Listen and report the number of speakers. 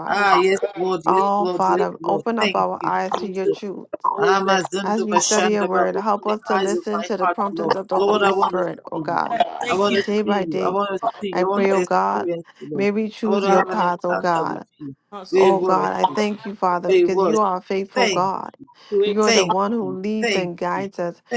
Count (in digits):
3